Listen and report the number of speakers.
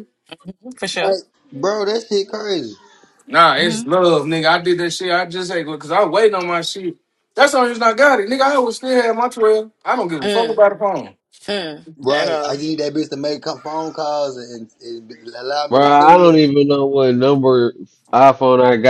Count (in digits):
4